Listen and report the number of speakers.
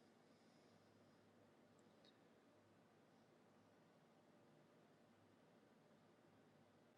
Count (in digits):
0